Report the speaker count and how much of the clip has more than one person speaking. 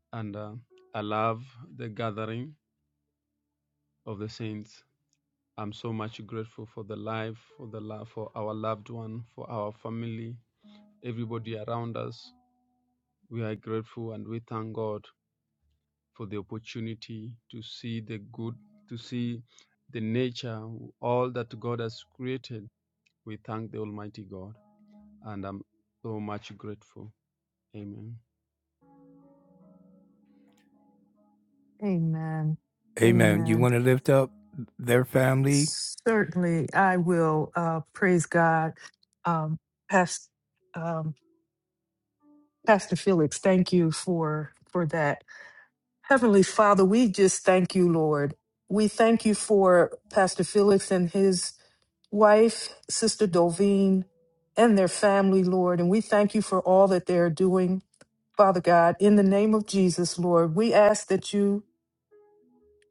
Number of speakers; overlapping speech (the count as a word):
three, about 1%